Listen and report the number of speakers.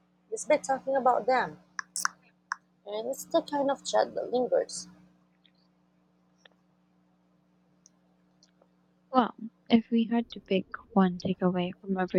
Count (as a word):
two